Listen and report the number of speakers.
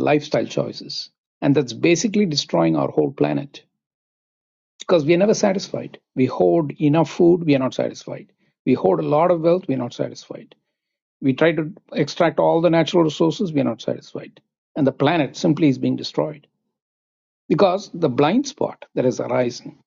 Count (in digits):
1